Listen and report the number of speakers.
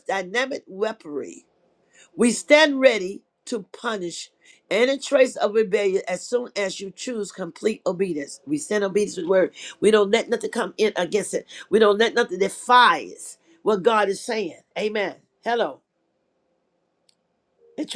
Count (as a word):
one